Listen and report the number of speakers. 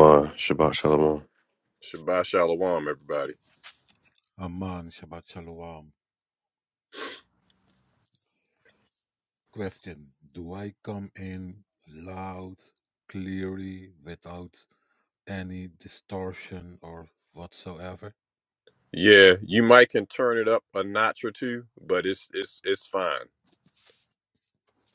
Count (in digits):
3